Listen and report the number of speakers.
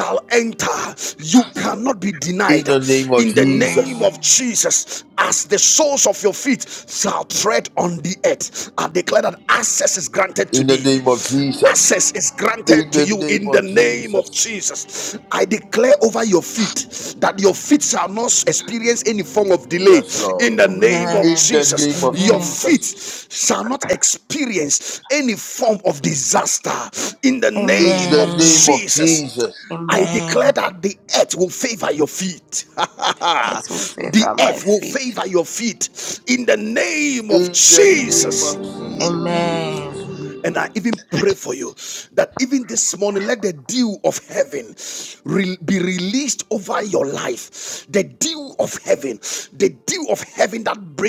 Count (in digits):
3